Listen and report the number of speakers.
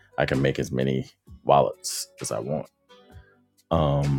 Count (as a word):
one